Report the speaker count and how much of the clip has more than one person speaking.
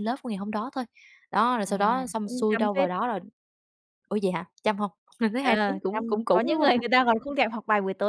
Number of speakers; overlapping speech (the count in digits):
2, about 28%